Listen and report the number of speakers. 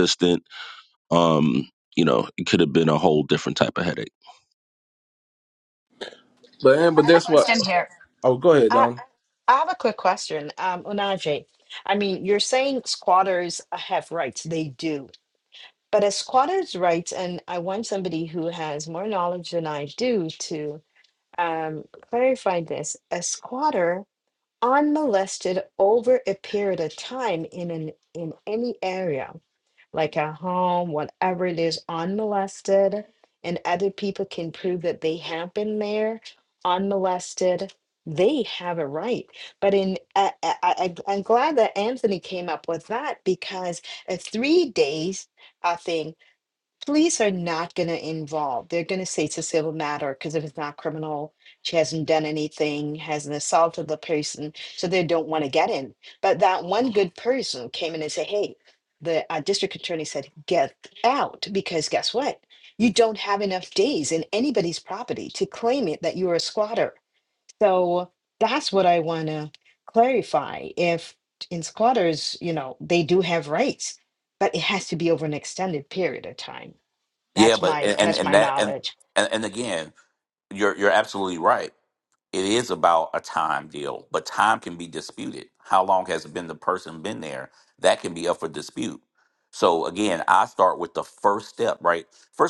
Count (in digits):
4